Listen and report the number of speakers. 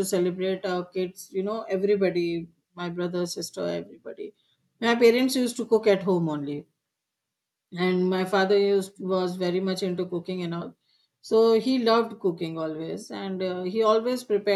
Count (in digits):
1